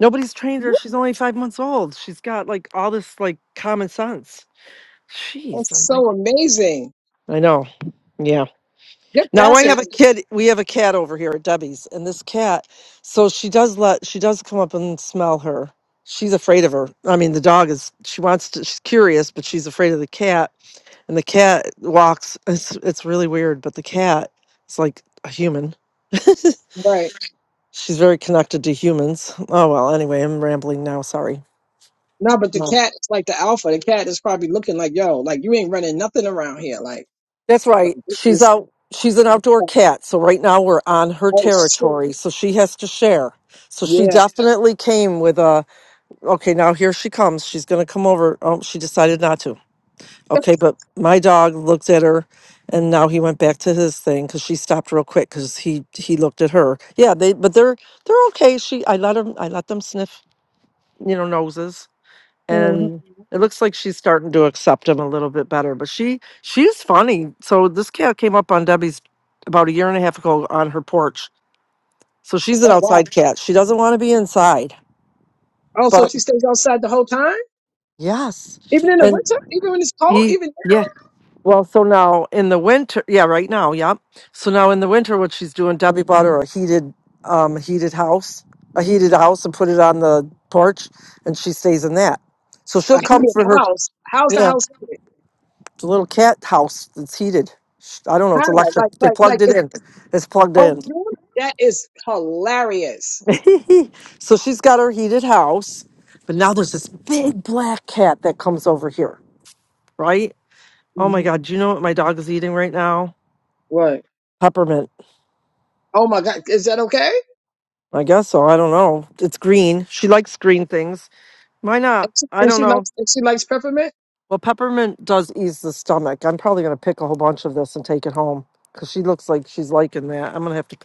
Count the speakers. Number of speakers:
two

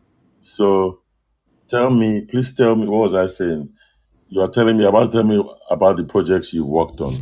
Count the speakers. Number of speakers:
one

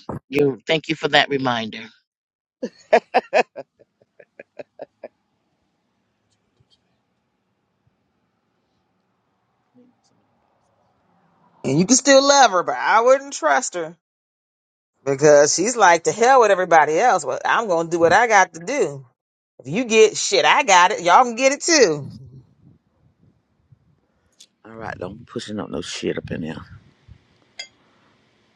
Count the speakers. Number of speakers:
three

